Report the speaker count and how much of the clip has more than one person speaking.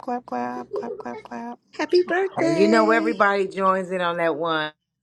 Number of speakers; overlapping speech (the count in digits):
3, about 15%